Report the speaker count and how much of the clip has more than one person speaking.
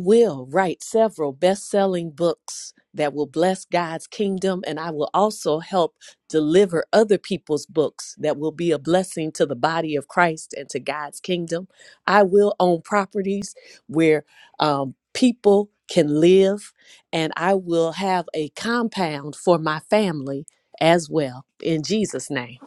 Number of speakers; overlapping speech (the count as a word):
one, no overlap